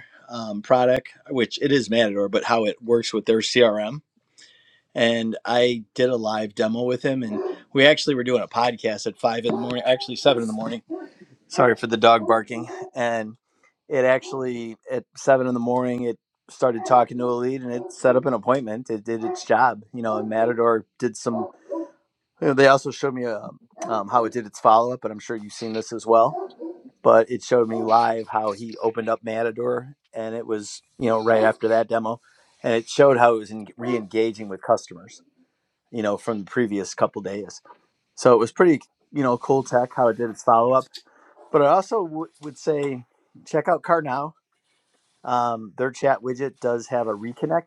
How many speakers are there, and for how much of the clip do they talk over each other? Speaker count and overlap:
one, no overlap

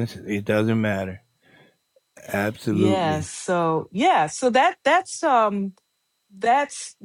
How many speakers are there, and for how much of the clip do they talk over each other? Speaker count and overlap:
two, about 7%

